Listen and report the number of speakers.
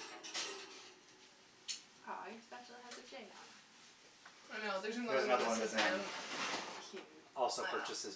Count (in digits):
3